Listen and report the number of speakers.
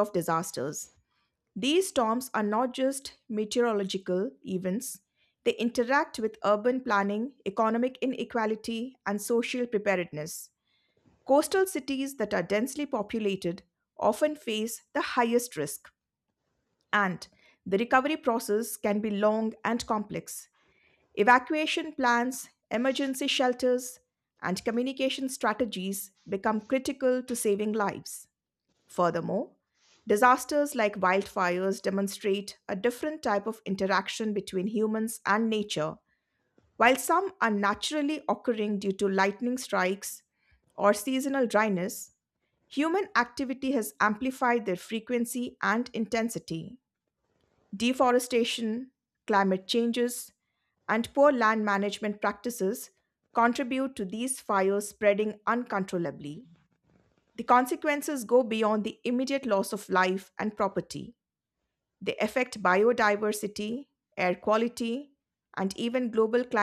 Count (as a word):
one